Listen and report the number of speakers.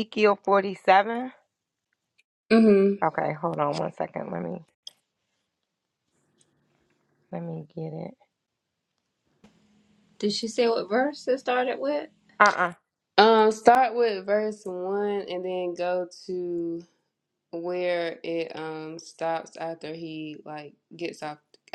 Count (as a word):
three